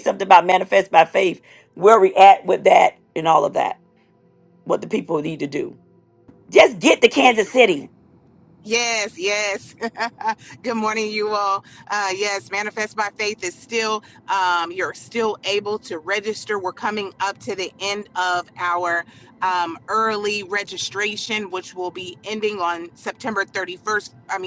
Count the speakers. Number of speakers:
2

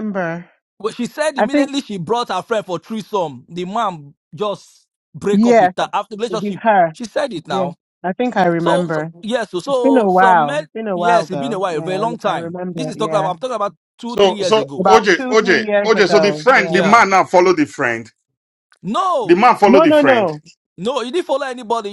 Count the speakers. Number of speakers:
3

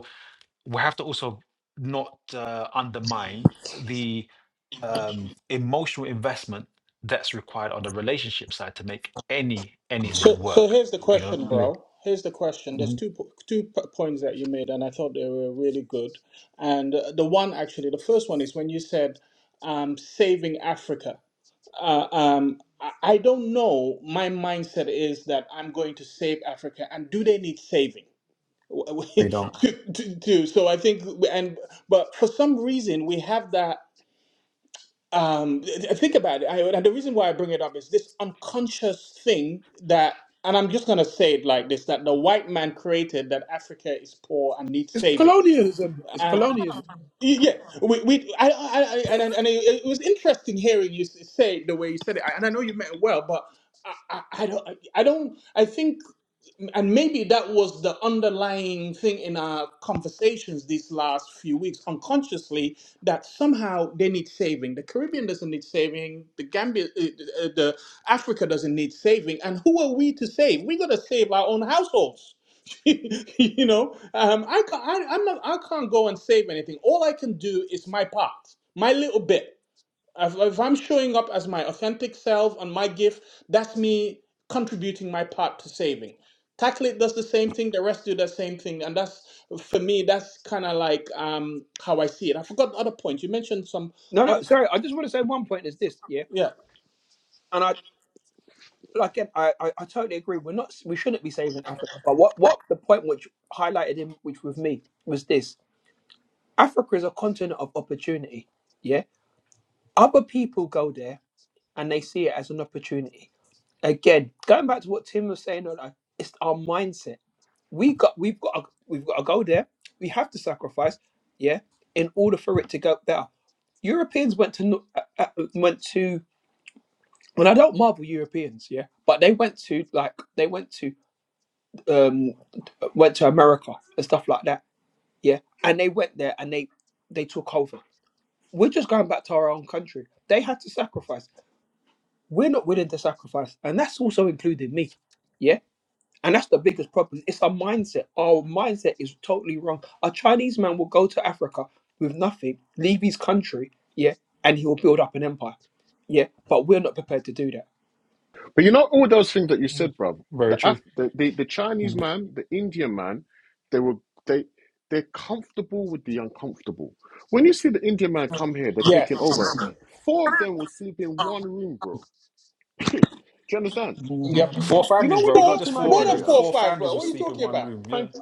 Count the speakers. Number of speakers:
4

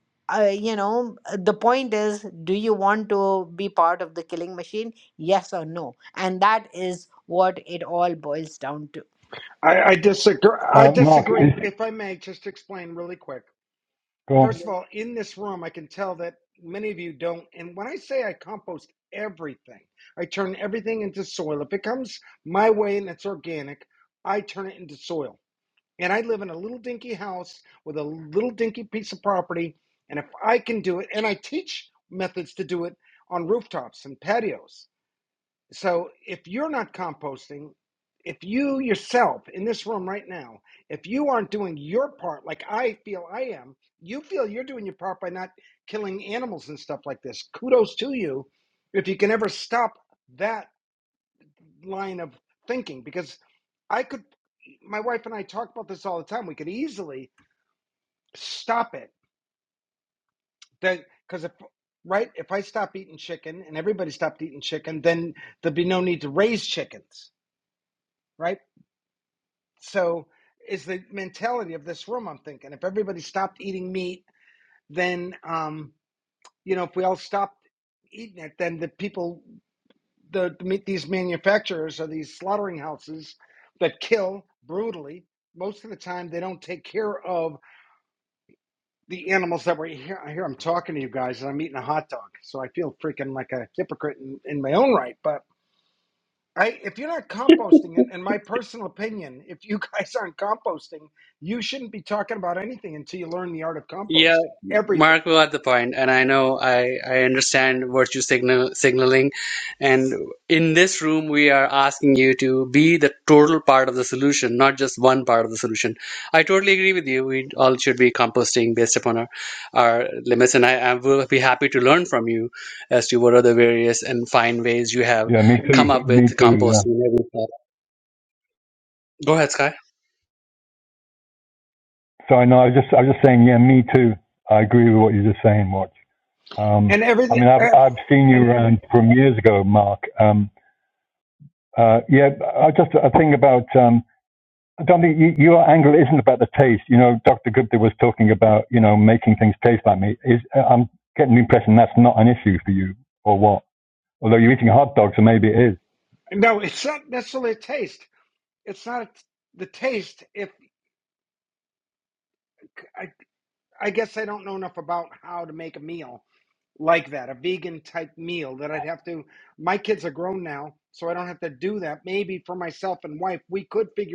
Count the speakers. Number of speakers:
4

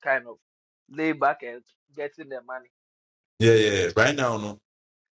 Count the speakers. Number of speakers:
2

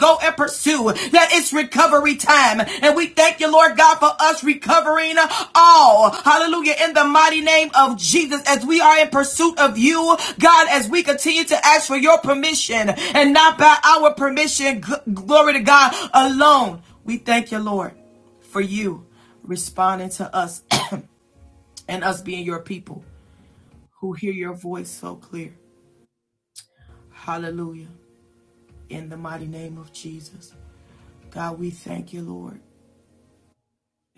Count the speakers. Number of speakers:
1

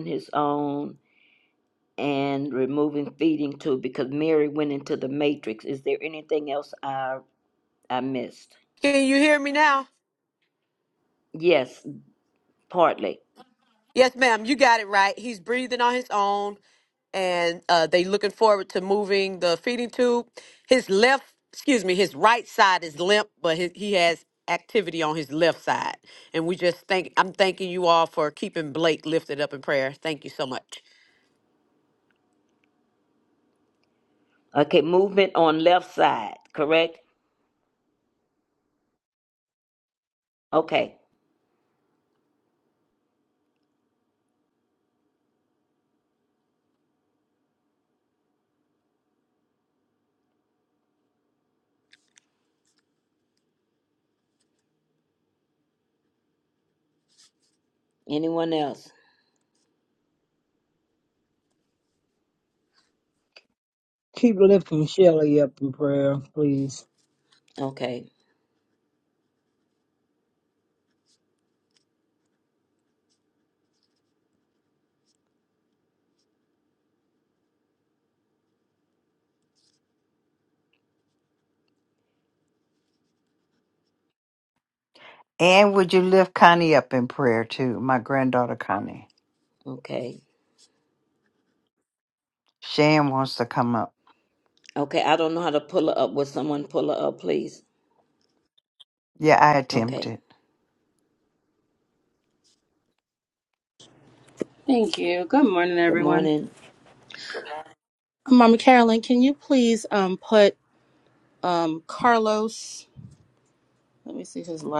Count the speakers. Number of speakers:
5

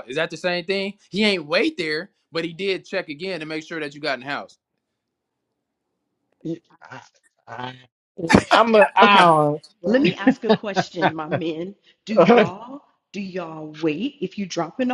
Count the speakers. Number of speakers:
3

